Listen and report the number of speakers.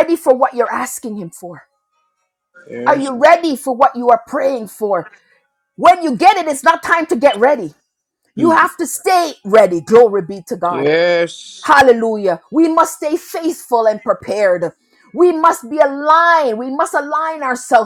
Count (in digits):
2